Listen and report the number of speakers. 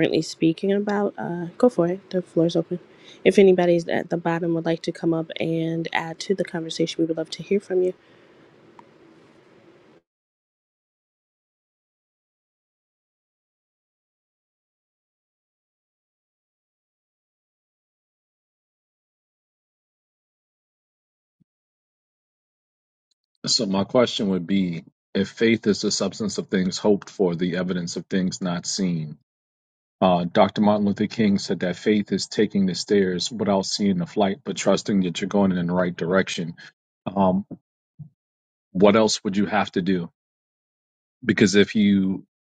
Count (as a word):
two